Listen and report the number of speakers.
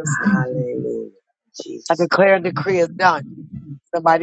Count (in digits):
2